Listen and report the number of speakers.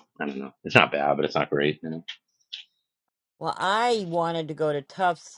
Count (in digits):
2